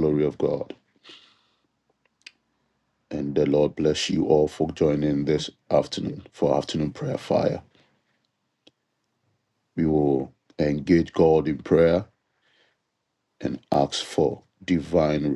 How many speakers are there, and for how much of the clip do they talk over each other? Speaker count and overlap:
1, no overlap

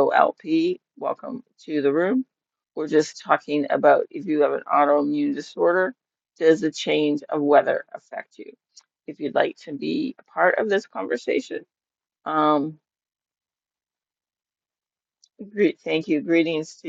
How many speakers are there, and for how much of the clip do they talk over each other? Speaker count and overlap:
1, no overlap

